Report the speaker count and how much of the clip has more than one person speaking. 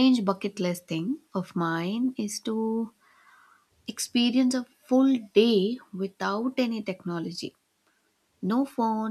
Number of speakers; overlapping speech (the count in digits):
1, no overlap